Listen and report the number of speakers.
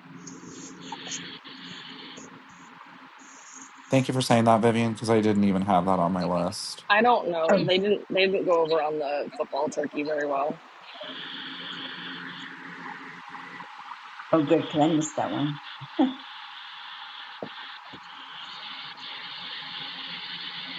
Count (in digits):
3